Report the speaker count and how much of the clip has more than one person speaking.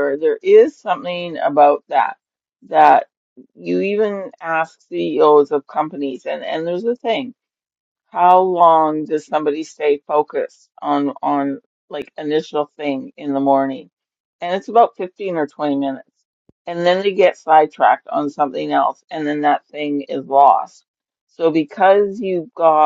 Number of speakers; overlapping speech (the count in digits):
1, no overlap